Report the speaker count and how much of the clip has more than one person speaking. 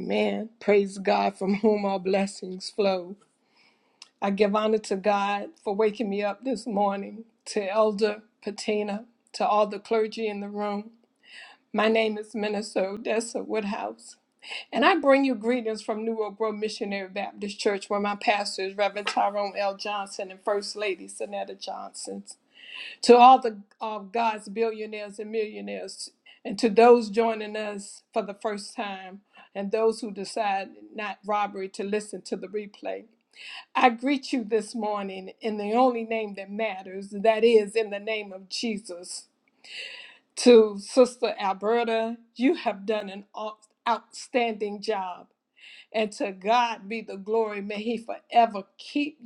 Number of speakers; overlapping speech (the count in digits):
1, no overlap